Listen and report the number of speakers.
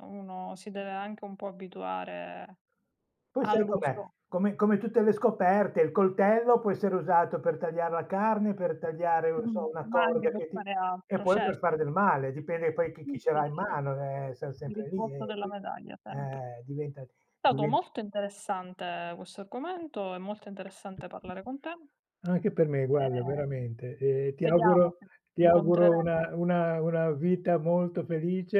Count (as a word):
two